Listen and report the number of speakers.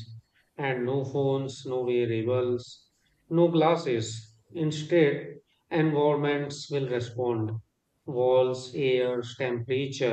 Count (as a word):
one